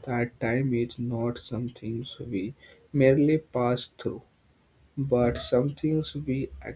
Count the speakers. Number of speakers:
1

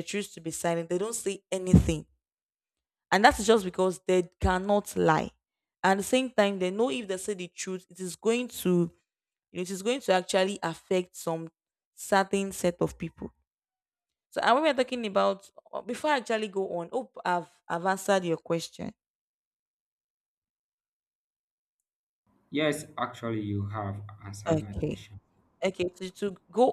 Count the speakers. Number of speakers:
2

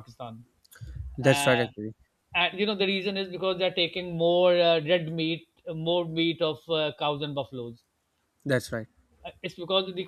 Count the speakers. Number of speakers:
2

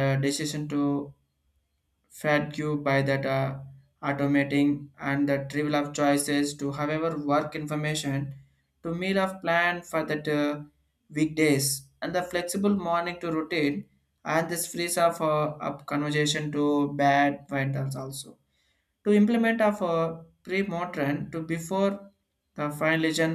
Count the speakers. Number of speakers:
1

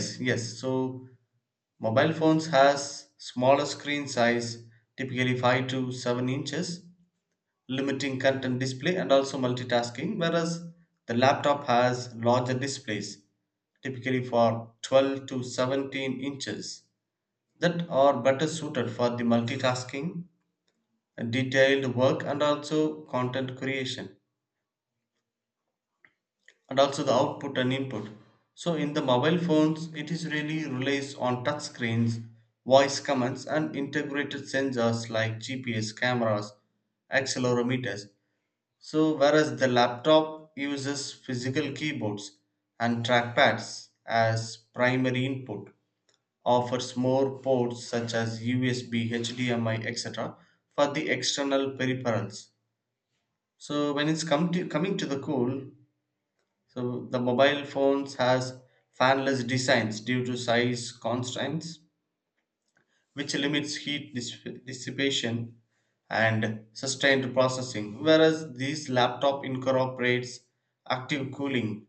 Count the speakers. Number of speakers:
1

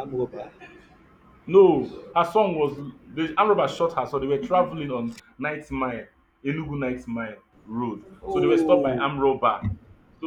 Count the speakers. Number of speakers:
2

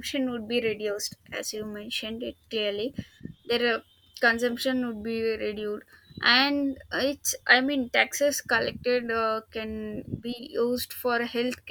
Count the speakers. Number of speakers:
1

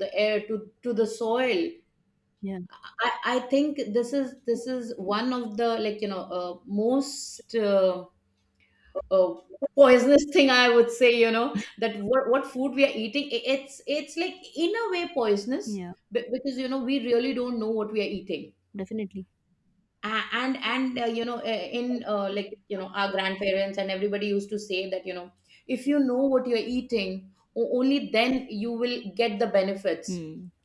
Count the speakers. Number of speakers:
2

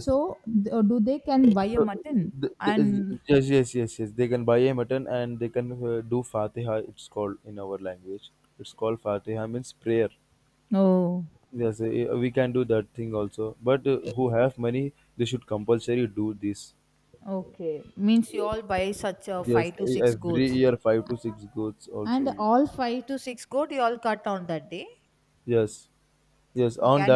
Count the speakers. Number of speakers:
2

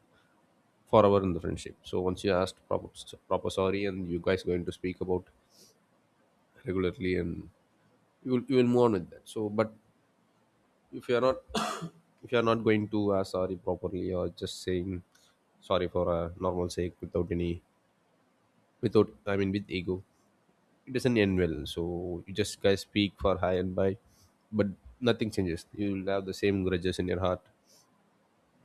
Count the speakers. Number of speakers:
1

